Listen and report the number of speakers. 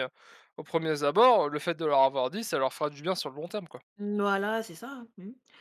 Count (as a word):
two